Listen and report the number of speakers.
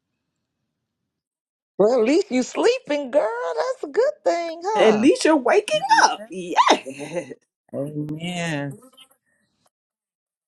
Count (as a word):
three